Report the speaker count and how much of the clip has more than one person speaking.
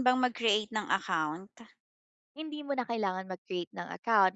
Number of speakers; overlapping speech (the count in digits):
2, no overlap